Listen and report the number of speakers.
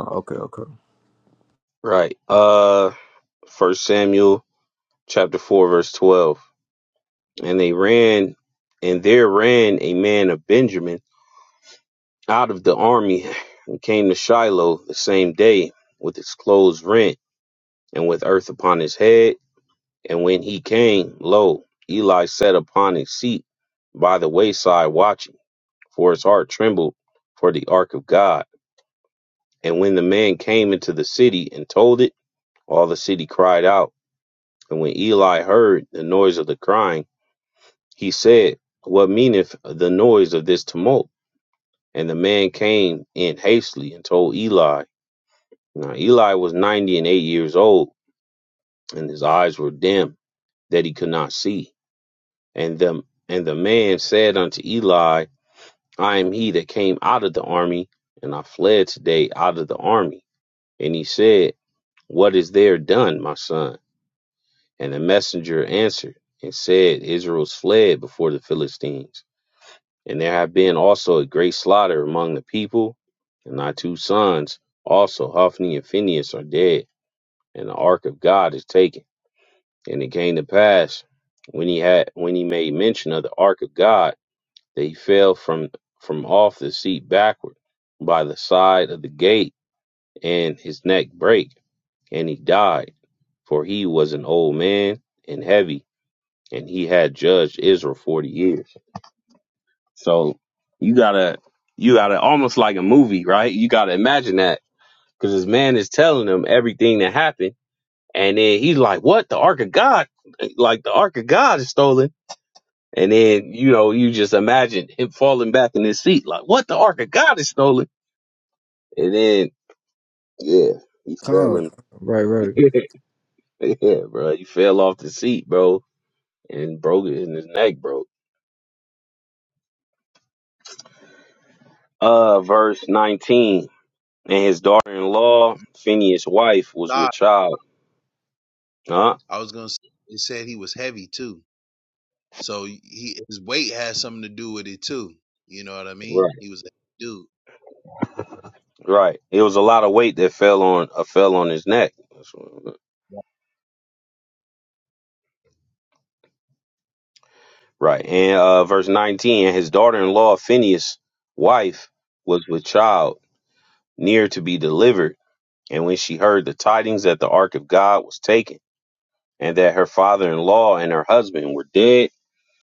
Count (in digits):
3